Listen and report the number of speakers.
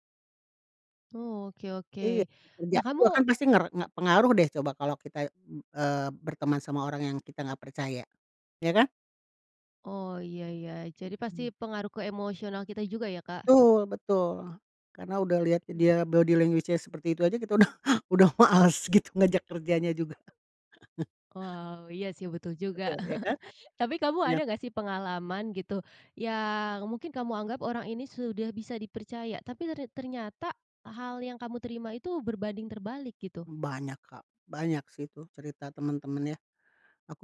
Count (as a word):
two